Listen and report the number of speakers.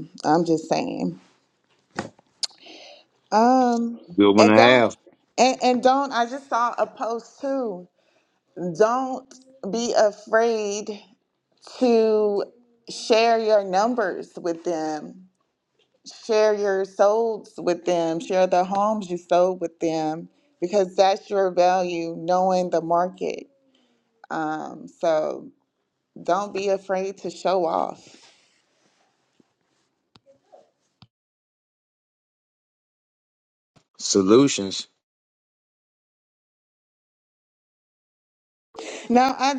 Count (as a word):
two